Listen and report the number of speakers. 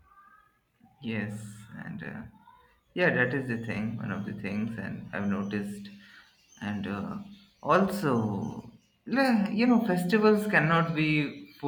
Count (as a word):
one